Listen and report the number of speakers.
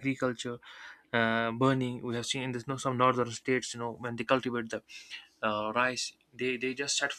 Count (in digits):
1